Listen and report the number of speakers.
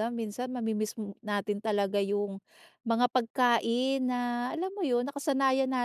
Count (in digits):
1